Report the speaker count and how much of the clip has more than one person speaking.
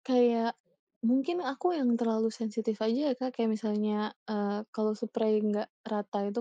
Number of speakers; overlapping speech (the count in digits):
1, no overlap